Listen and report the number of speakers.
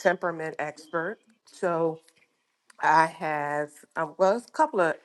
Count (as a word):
one